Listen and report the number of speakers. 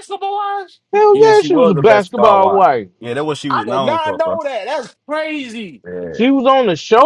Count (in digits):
3